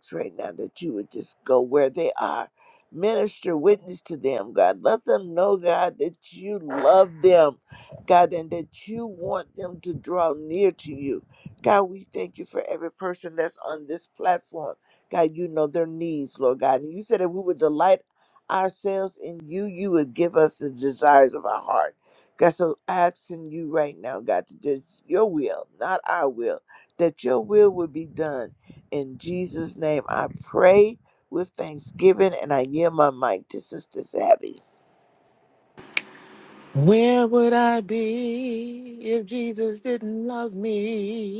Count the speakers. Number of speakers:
2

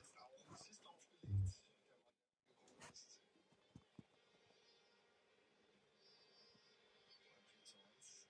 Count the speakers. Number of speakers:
0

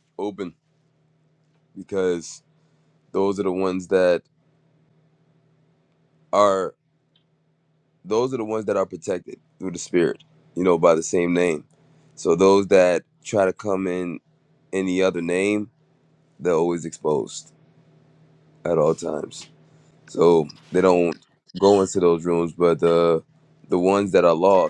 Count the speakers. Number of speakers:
1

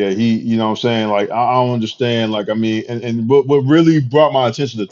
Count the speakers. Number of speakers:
1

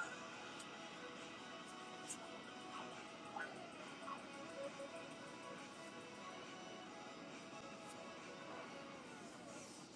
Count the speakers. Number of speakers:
0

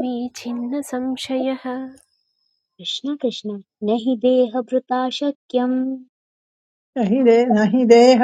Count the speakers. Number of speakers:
3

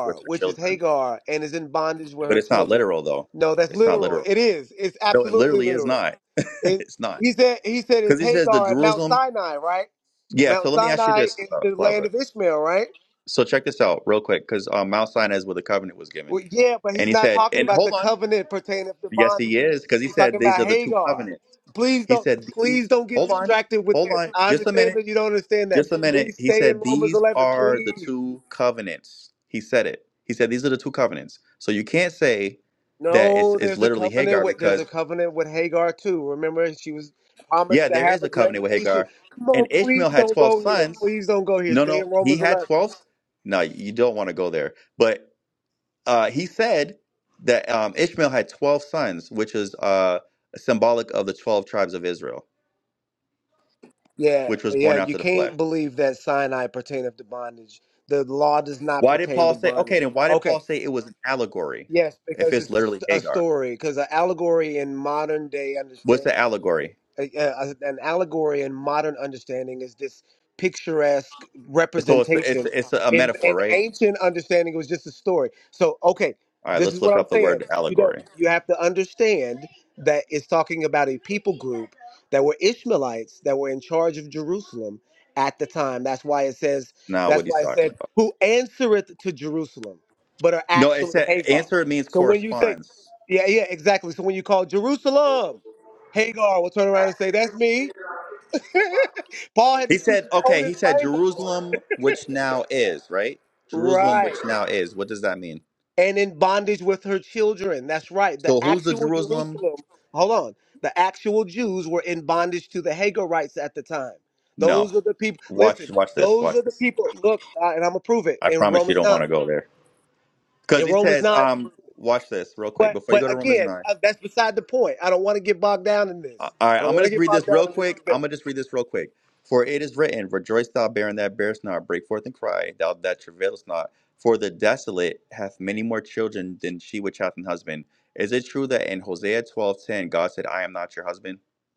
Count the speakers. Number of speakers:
2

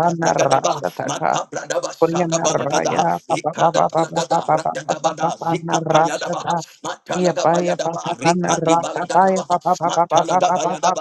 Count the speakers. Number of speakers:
2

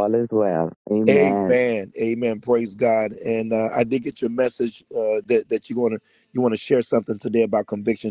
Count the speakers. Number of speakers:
2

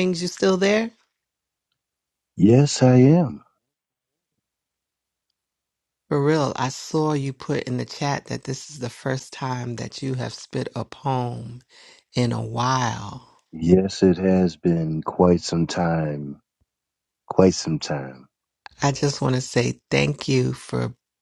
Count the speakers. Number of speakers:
2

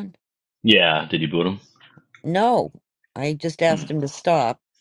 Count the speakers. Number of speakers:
2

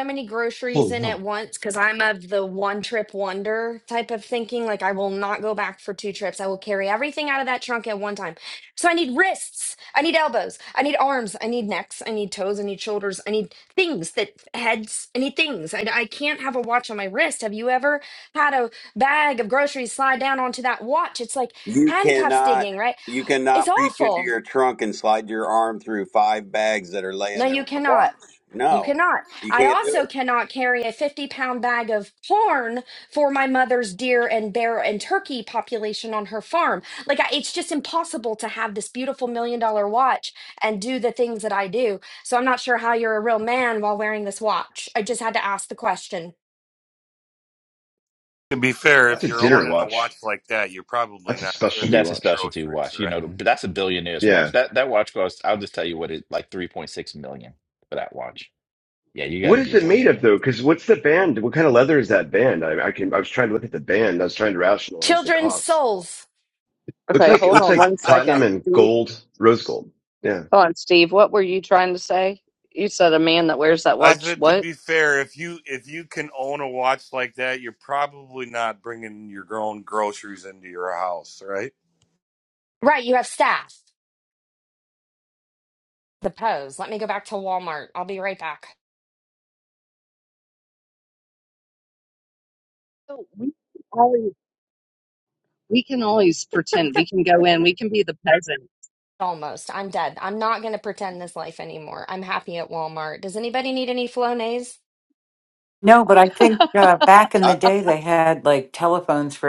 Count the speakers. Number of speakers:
7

